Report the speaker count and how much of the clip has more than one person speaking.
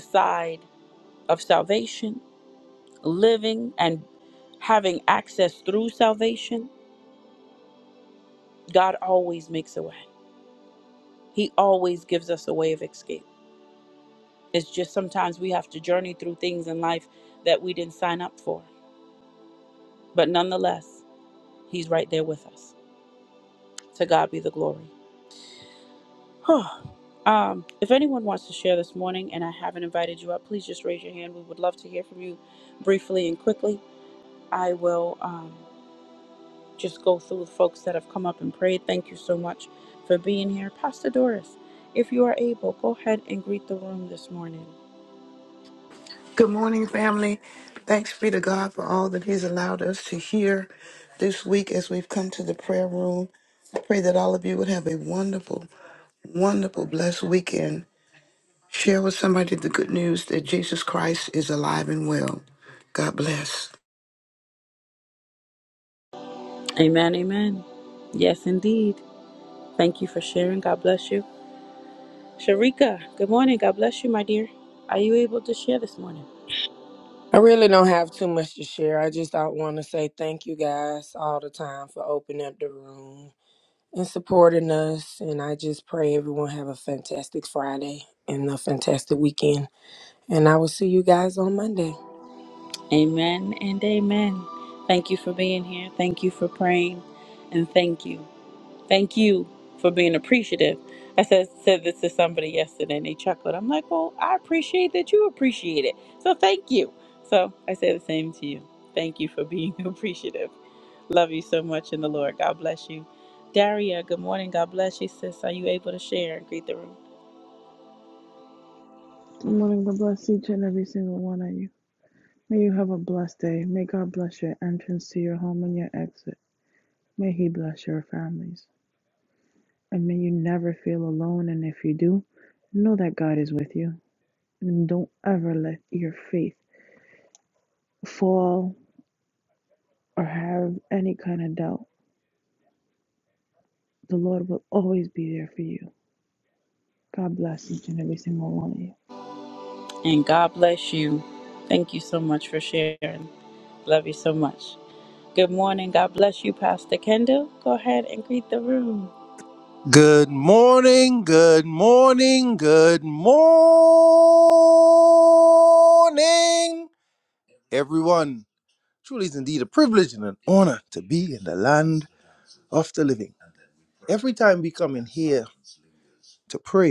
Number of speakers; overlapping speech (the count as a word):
five, no overlap